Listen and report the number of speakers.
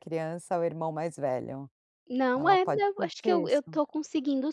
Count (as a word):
two